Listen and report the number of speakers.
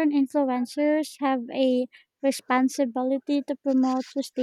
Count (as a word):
one